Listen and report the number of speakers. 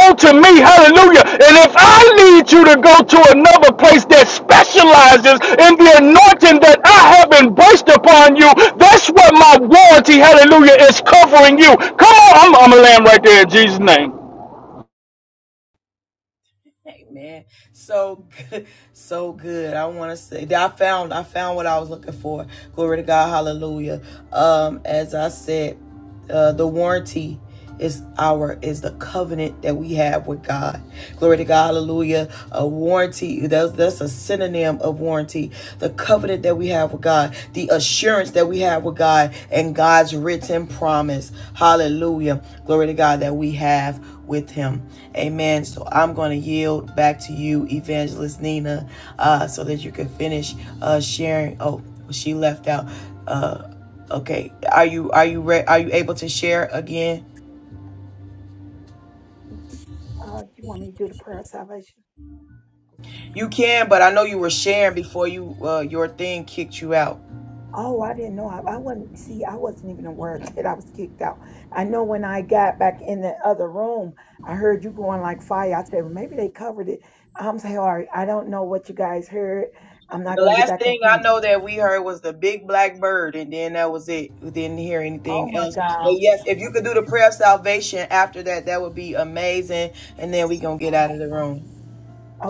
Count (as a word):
three